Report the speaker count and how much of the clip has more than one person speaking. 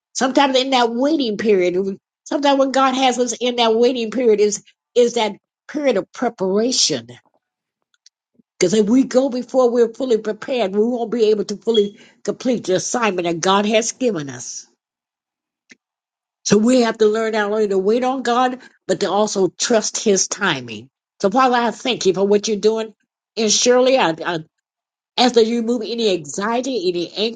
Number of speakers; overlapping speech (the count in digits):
1, no overlap